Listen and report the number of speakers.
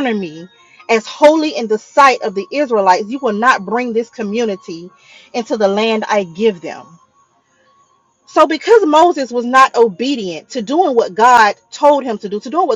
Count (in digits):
1